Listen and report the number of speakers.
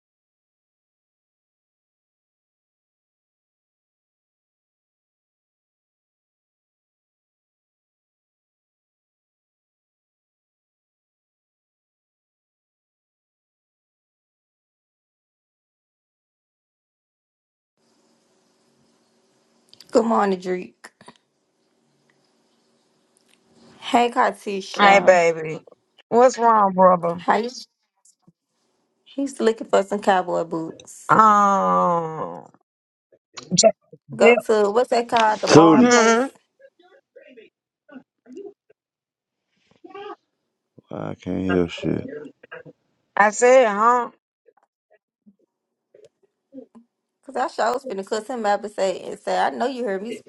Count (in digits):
3